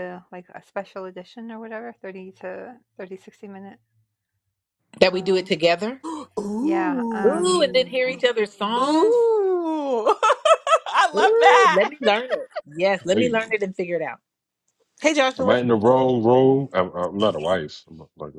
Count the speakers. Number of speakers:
four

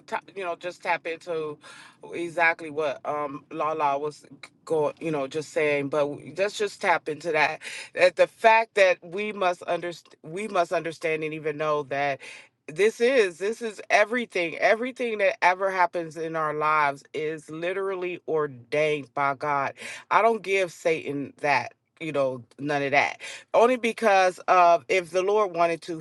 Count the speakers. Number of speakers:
one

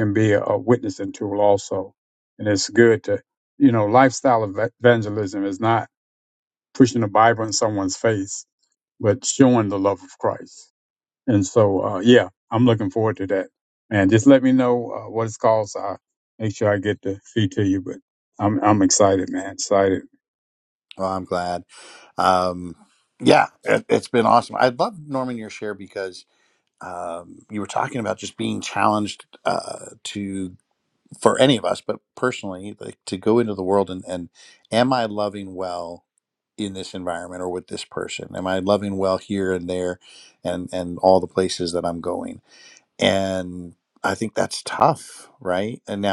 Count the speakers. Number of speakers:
two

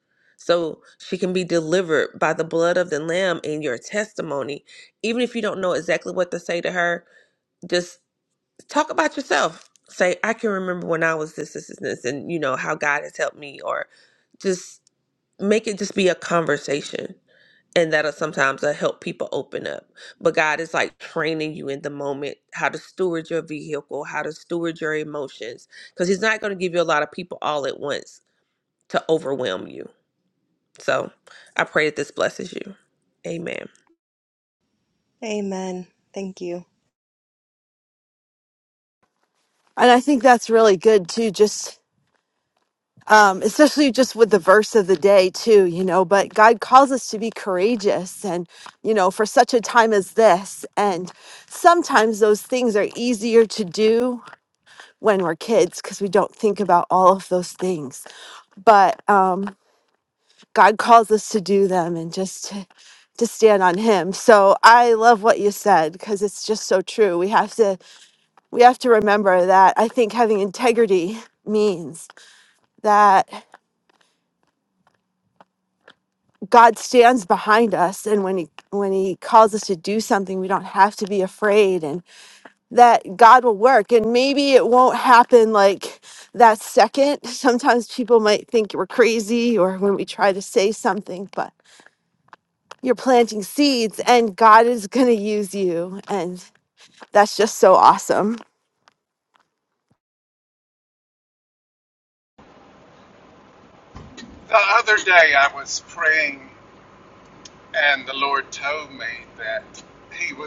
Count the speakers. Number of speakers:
four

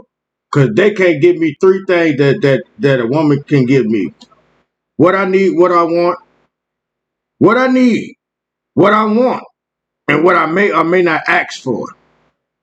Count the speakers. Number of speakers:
one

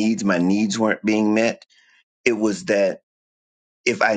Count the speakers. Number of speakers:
one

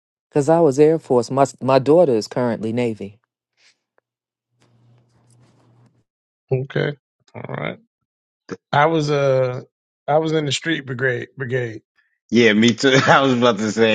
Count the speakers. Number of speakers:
three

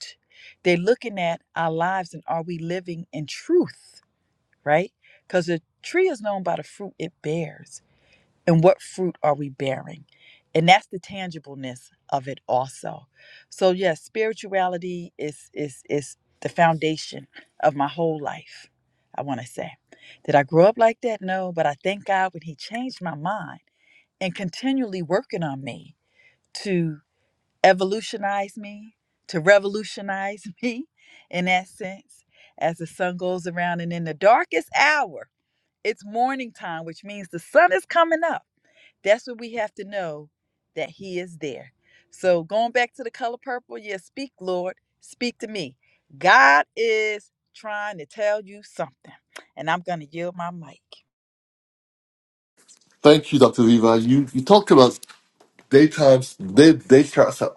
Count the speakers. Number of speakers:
two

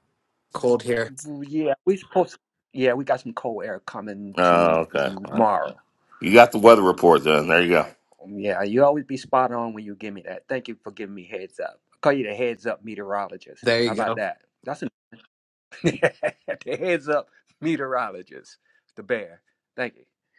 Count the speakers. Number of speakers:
three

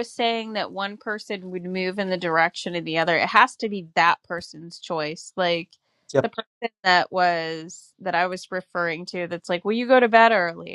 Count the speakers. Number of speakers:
one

